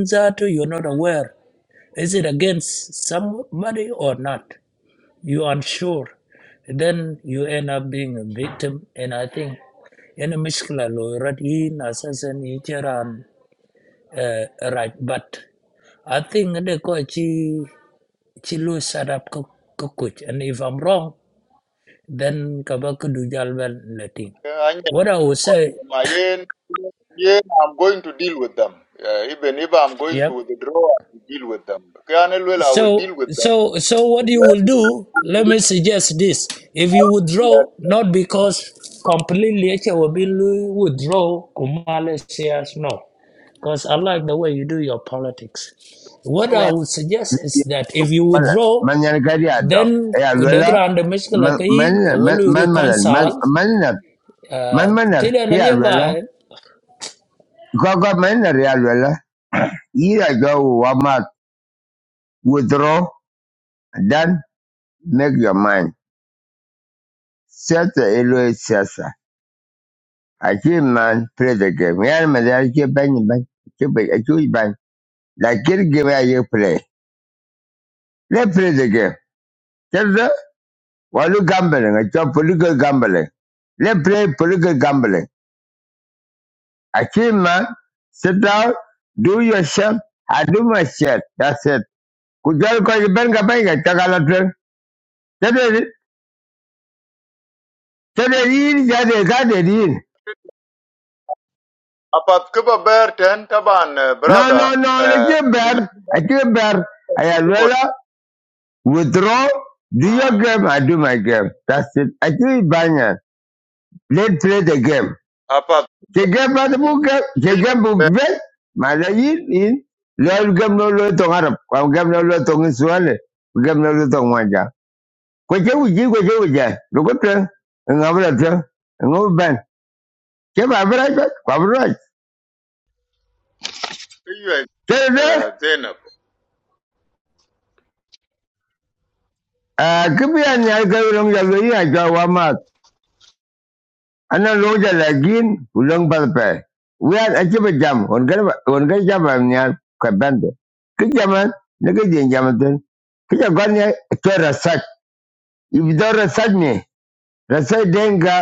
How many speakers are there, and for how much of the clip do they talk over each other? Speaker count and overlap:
3, about 6%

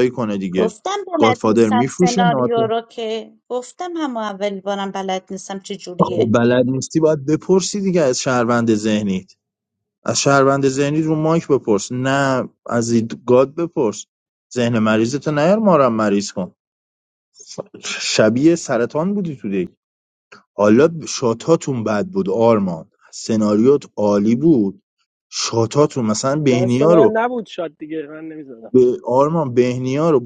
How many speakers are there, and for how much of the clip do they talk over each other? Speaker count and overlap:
3, about 8%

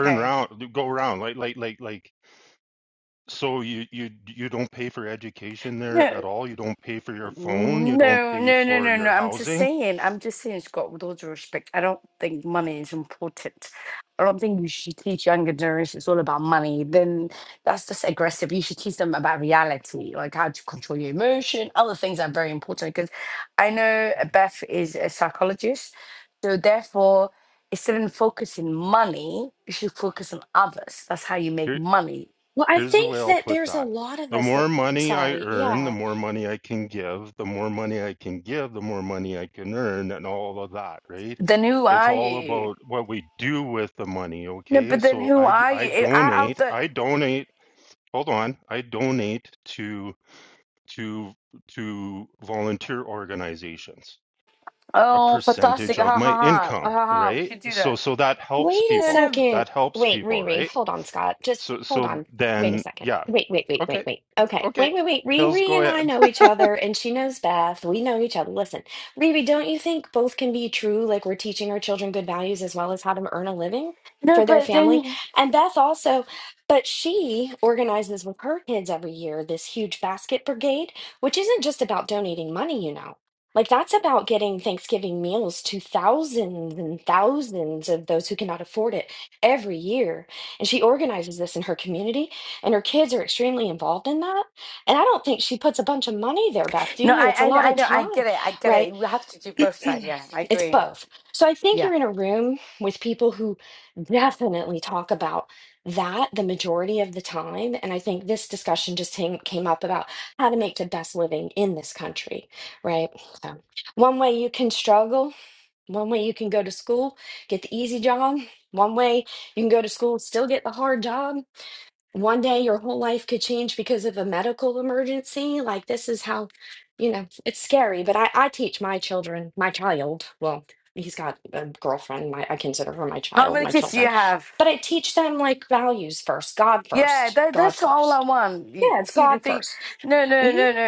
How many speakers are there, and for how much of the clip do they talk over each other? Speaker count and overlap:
3, about 15%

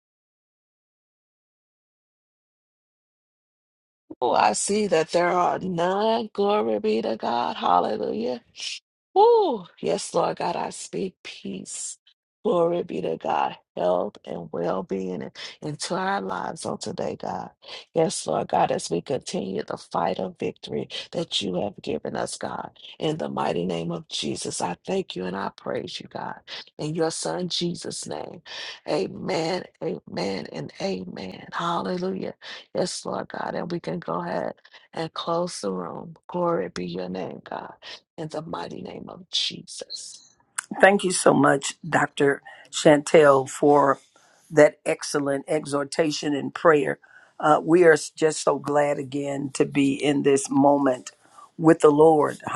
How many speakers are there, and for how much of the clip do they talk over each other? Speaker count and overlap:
2, no overlap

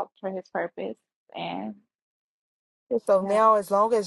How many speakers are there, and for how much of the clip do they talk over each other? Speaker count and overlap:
2, about 5%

